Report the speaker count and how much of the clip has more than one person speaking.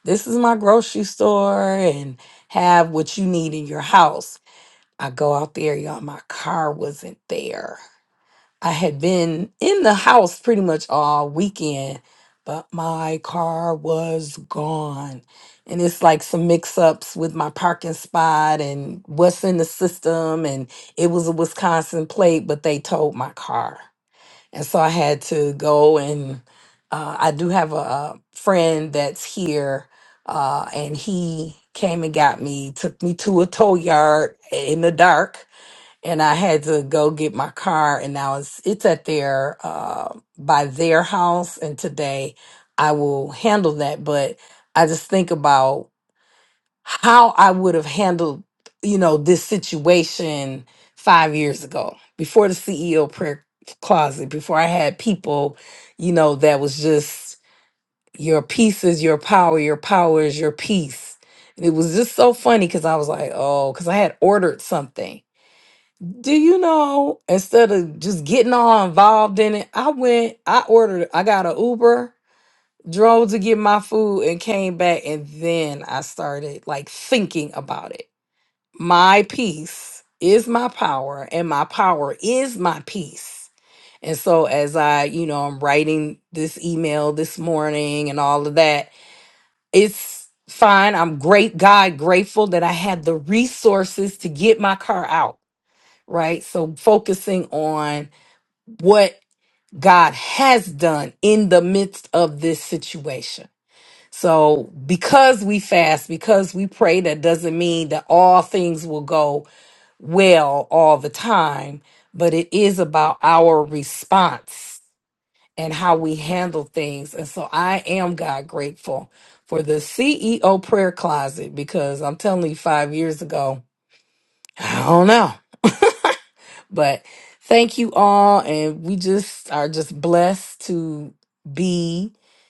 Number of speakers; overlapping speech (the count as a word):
one, no overlap